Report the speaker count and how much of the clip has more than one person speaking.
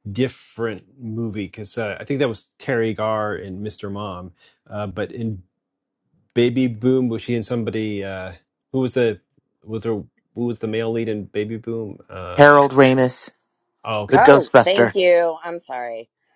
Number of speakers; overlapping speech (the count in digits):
3, about 6%